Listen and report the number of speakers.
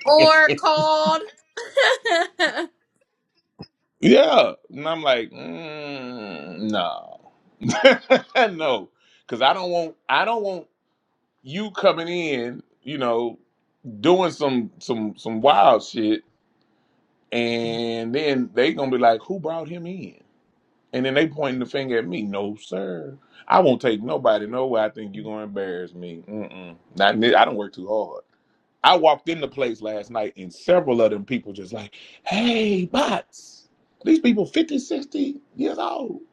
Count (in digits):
2